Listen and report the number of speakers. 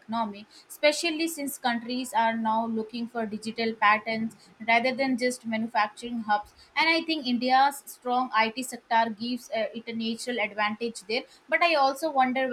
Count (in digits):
1